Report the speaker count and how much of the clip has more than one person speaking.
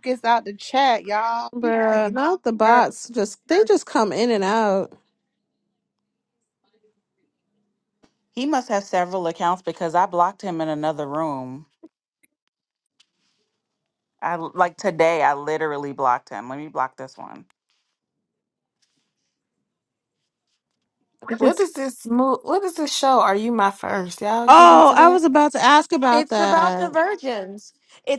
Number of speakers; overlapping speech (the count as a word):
five, about 8%